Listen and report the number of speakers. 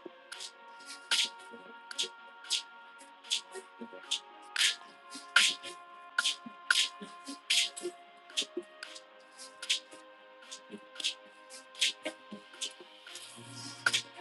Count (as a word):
zero